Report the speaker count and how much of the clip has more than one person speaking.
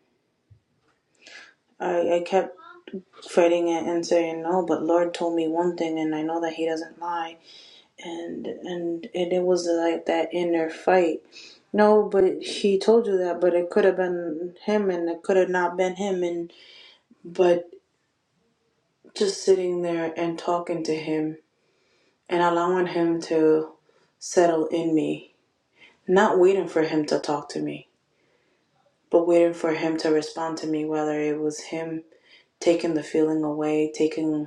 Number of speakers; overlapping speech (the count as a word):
one, no overlap